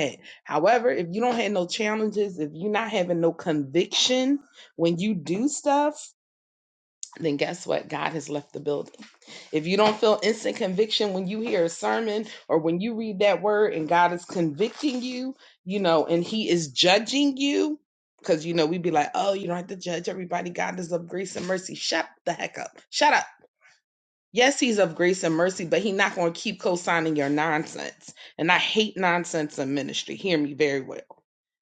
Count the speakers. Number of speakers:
one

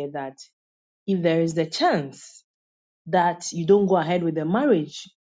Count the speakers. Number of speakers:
one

